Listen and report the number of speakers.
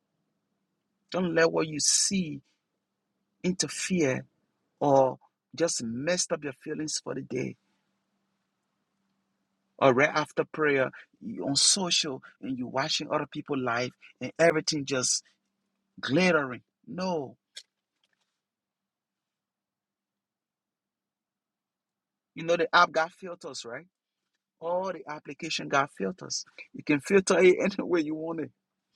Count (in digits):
1